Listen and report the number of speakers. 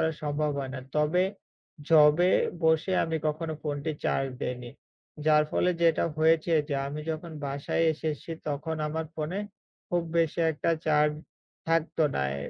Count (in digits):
1